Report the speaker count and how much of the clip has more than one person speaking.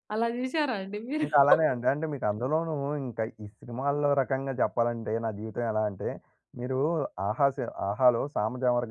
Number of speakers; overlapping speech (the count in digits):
2, about 1%